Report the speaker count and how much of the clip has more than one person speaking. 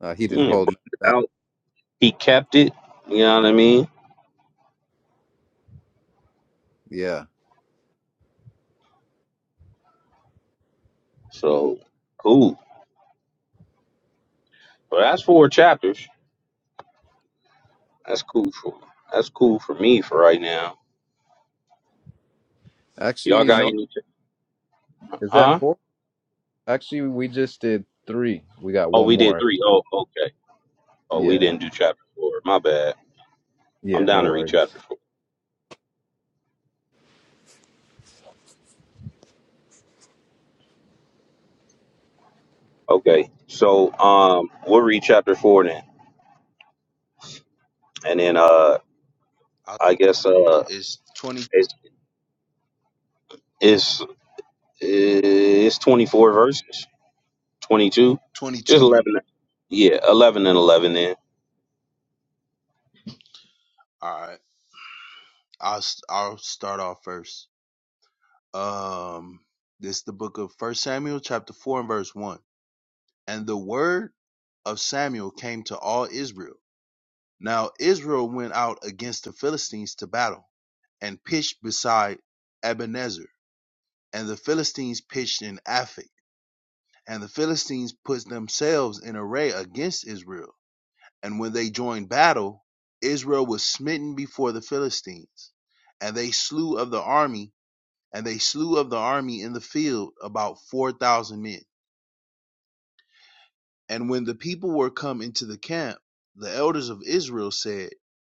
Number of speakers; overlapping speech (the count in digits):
3, about 3%